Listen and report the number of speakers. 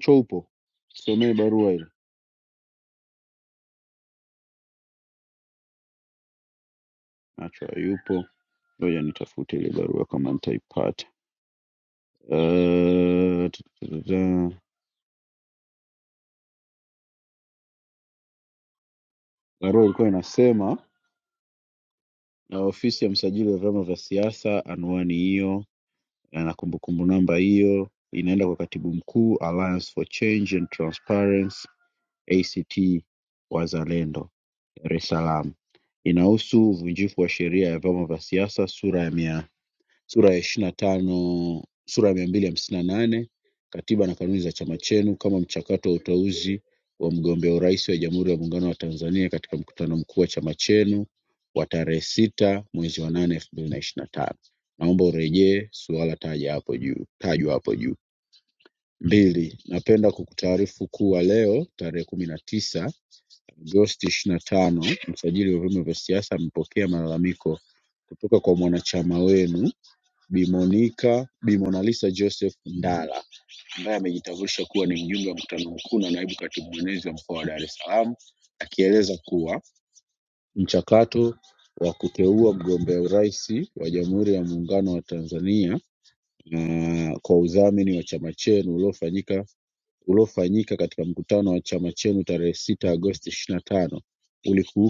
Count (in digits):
1